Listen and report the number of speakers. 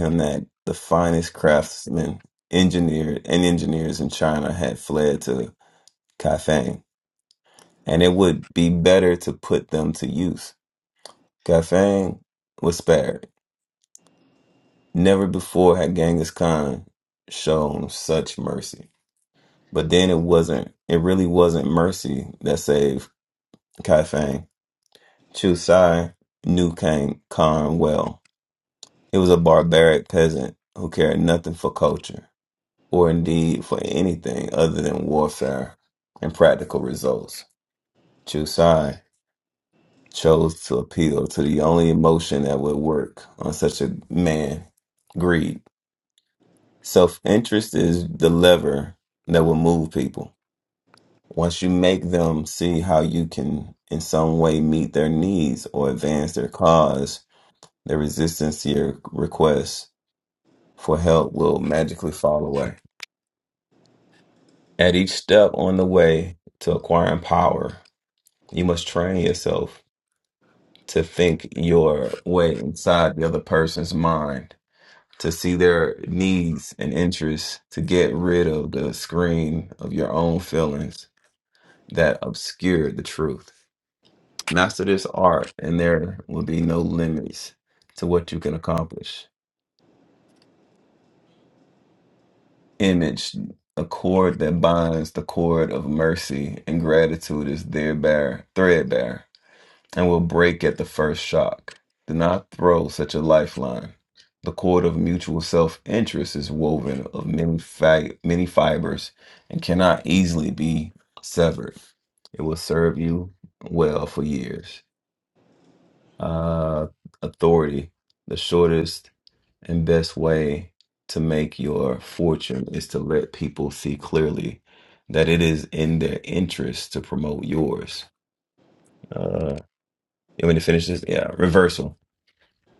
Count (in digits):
1